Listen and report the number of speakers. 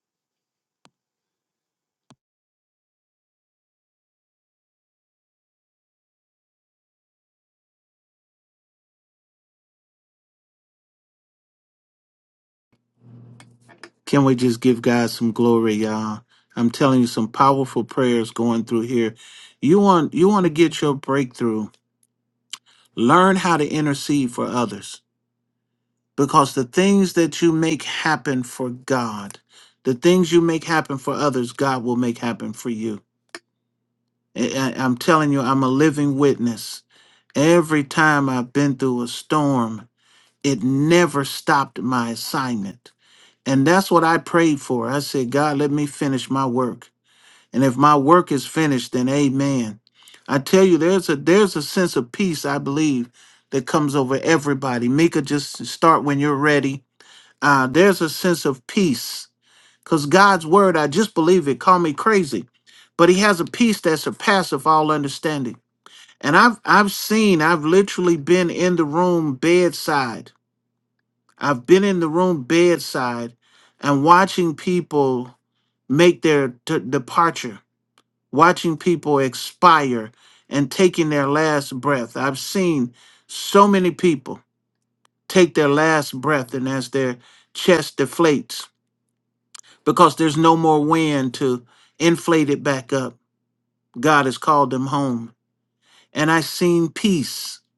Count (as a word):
one